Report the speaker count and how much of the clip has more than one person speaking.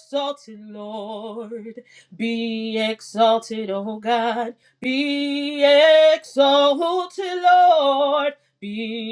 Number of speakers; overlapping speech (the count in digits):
1, no overlap